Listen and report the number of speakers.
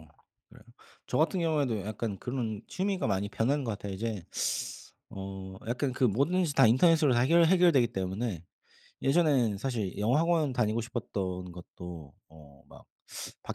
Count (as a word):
one